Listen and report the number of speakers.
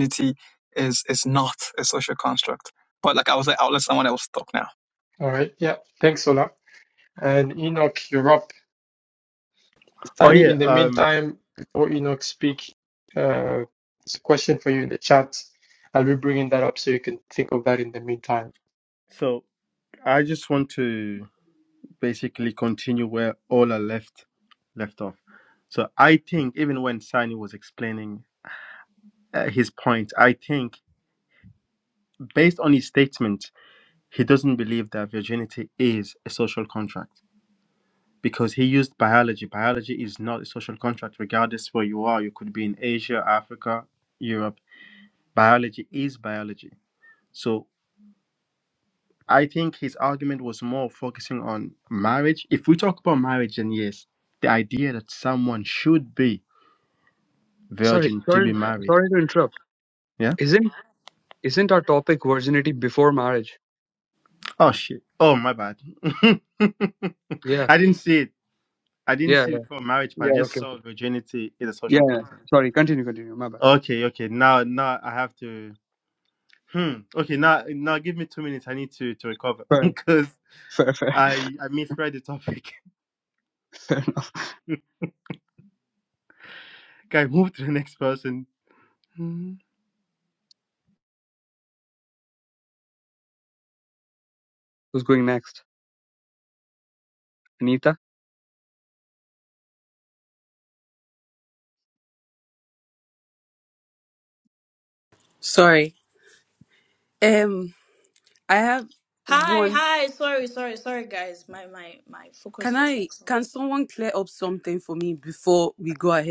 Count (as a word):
six